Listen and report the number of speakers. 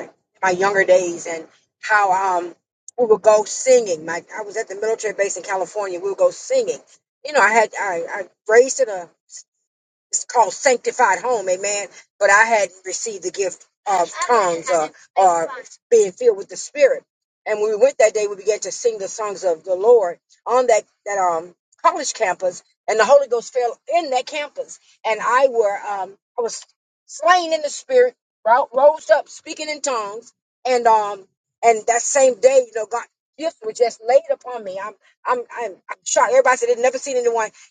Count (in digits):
1